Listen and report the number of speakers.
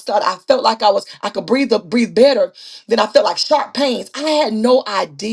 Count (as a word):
one